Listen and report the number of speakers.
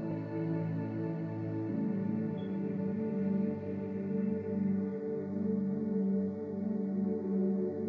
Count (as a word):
zero